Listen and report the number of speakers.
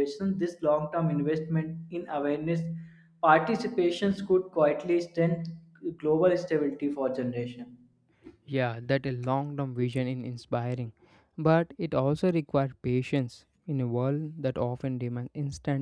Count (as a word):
two